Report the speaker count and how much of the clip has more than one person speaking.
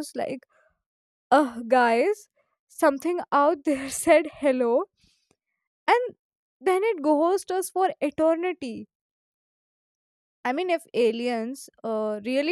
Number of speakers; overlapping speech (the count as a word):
one, no overlap